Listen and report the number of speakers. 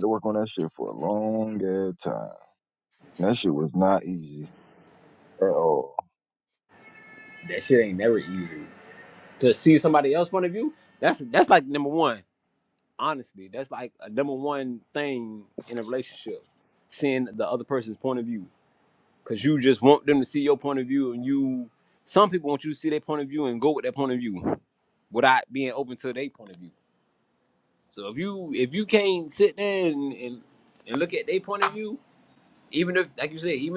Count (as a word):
two